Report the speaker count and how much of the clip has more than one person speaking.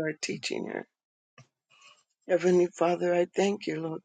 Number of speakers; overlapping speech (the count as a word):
one, no overlap